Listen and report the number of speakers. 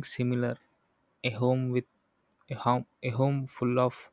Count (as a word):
one